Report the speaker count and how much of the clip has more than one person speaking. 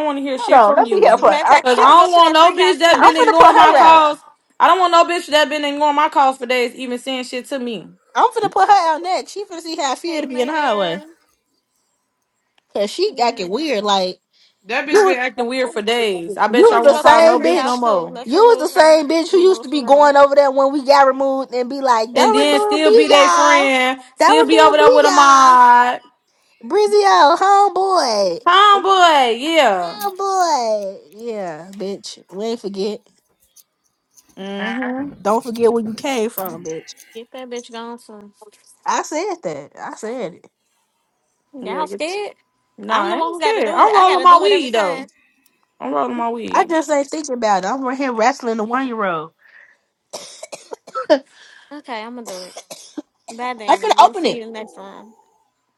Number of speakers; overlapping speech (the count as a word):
three, about 26%